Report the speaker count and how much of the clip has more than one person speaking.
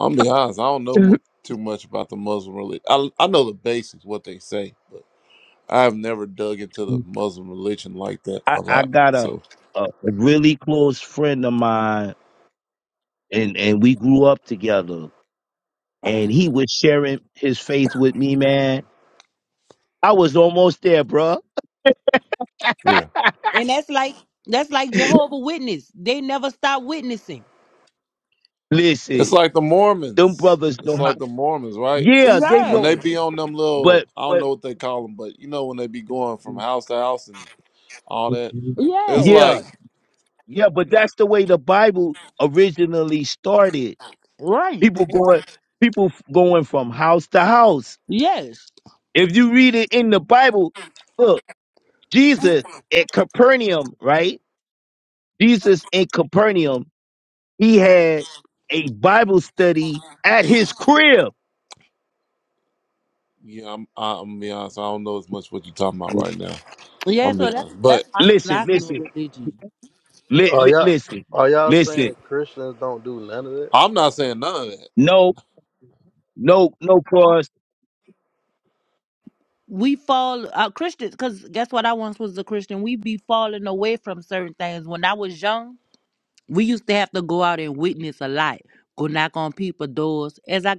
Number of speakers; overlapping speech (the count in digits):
4, about 6%